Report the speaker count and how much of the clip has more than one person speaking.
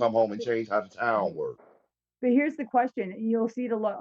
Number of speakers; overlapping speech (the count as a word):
two, about 5%